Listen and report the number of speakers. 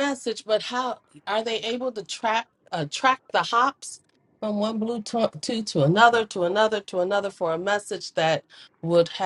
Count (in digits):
1